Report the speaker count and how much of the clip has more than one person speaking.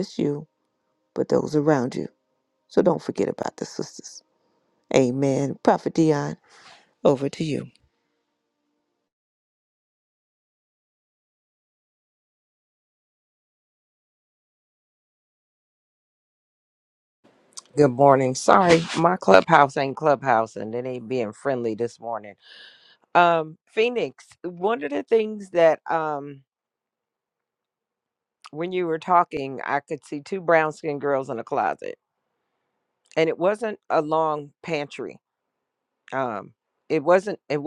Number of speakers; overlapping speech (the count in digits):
2, no overlap